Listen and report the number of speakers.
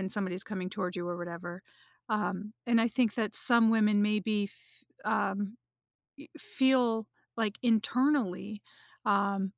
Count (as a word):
one